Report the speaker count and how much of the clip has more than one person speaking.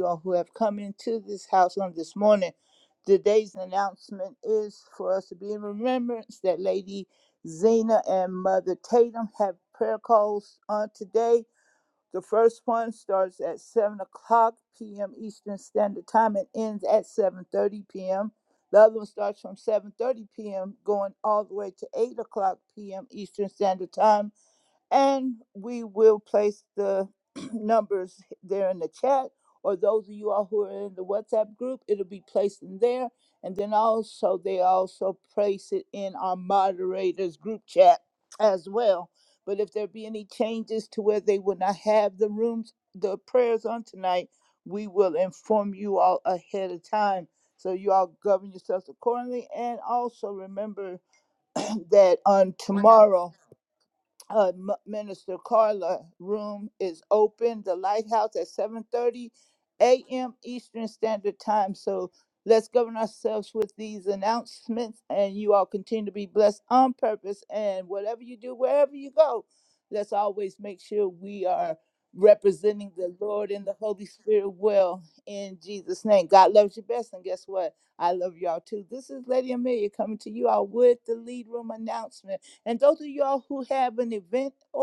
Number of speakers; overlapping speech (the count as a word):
one, no overlap